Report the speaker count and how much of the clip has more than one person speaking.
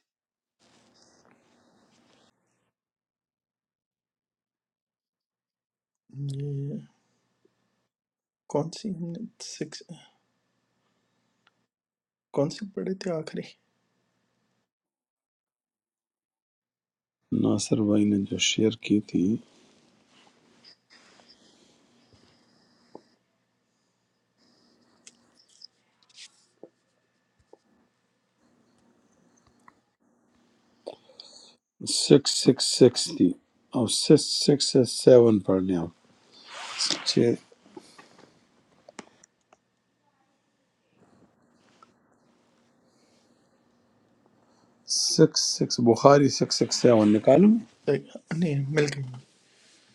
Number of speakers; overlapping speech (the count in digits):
2, no overlap